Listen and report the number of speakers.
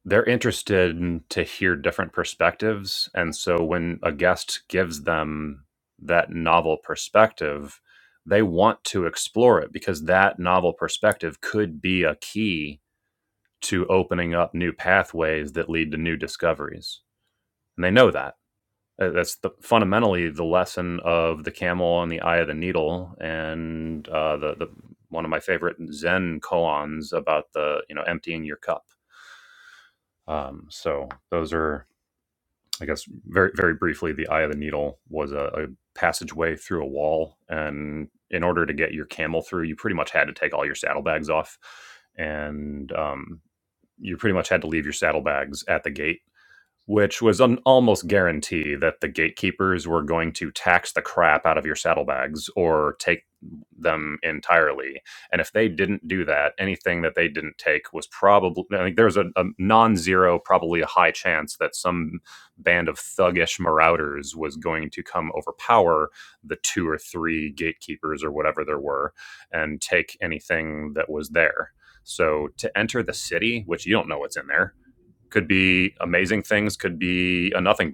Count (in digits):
1